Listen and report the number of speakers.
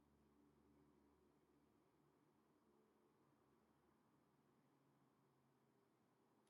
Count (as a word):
zero